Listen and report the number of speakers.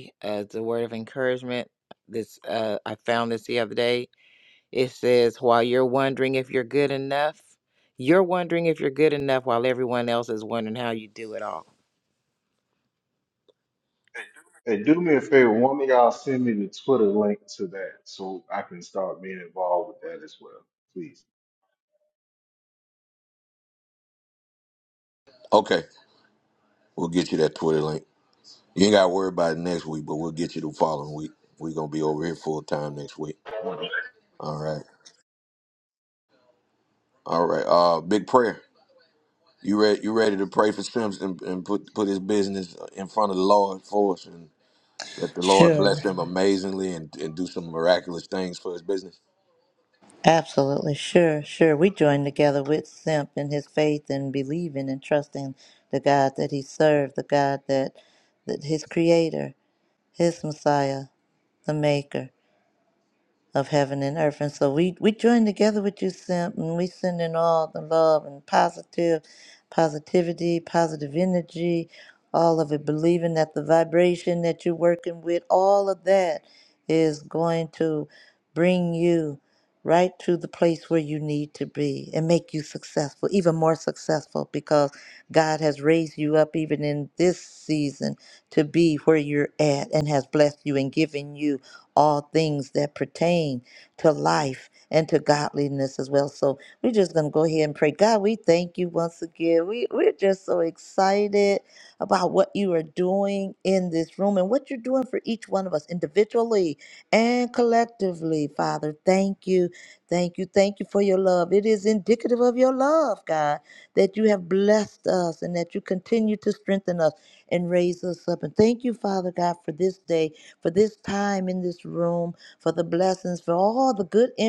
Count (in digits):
4